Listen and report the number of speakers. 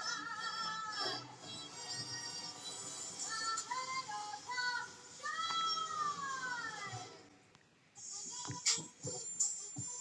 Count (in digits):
0